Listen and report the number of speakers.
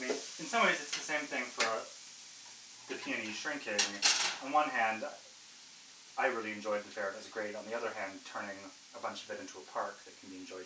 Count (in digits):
1